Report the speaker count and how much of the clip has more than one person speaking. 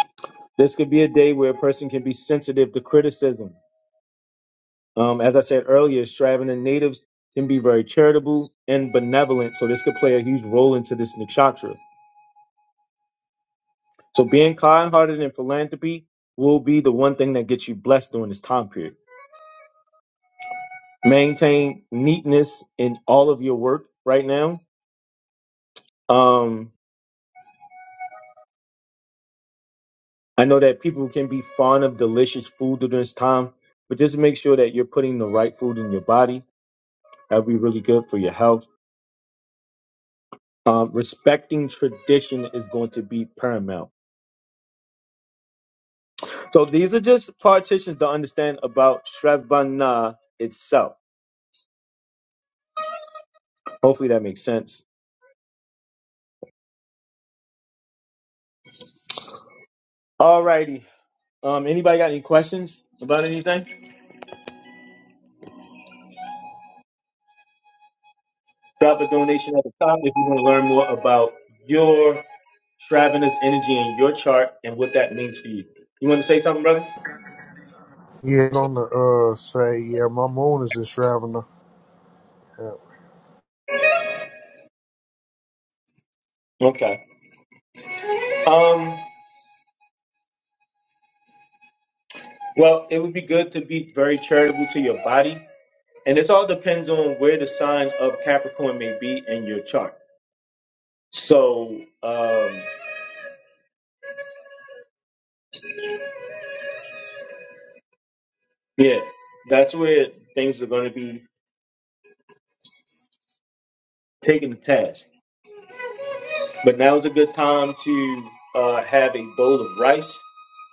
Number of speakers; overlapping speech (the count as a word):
two, no overlap